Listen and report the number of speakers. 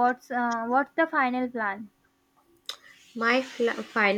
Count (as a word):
two